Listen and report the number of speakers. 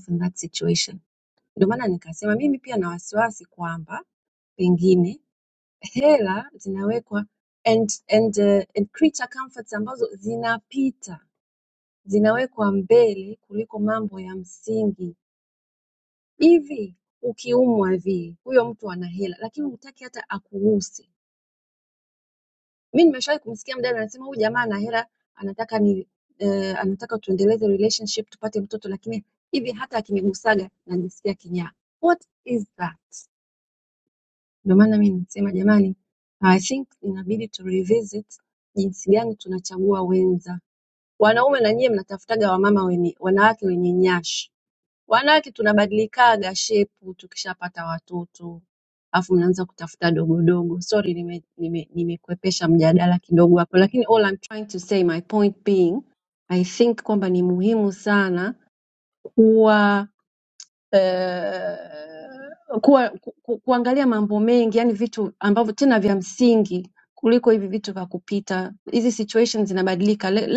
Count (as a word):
one